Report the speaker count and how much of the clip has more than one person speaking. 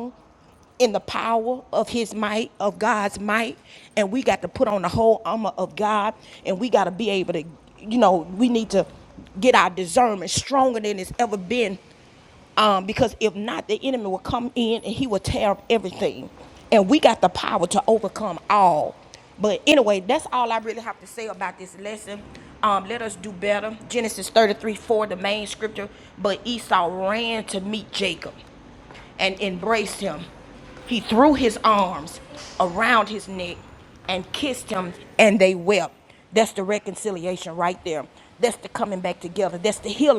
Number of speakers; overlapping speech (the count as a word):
one, no overlap